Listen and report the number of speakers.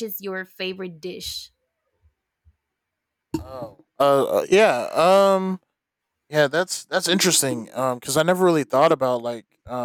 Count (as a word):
two